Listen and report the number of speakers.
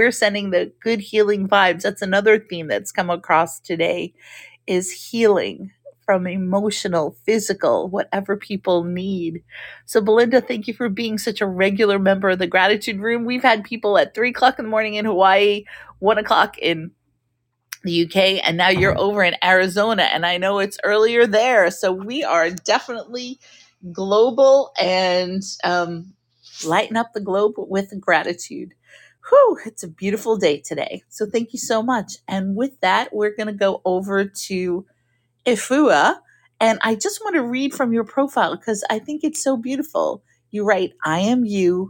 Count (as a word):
one